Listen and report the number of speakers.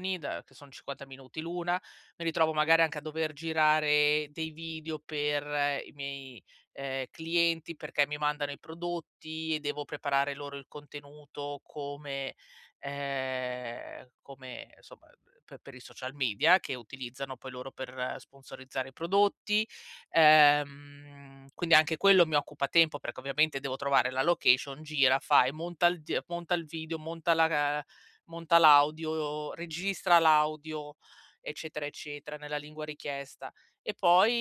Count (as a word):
one